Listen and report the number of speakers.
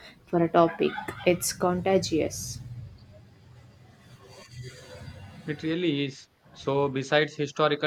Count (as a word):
two